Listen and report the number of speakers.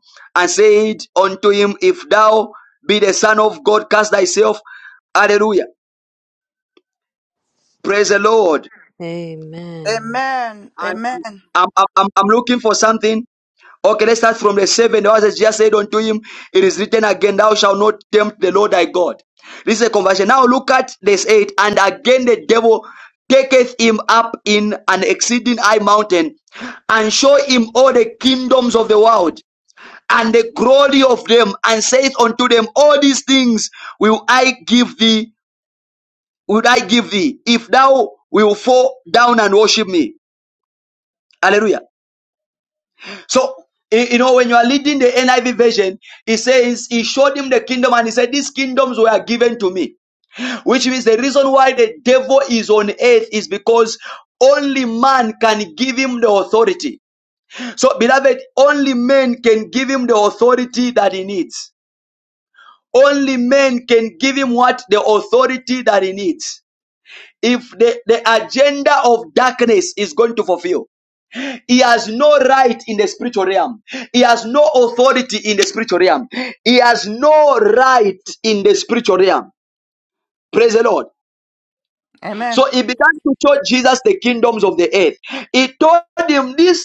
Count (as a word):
three